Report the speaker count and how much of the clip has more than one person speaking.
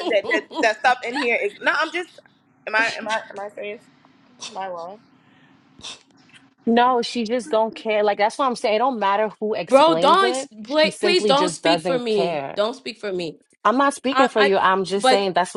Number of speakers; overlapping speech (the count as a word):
three, about 23%